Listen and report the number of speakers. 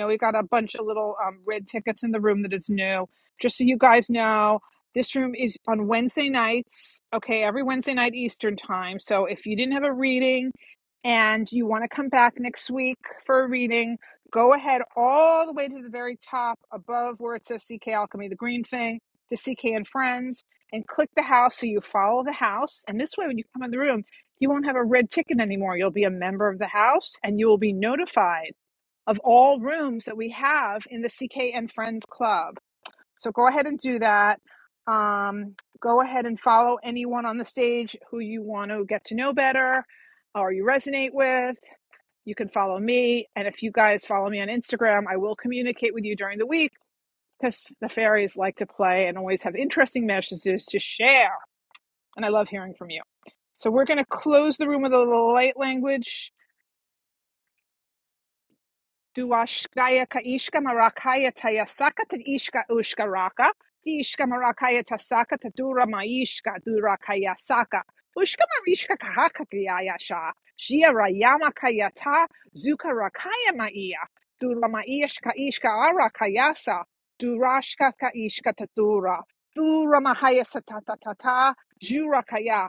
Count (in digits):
1